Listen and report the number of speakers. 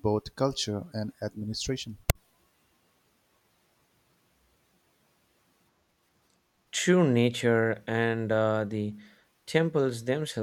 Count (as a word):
two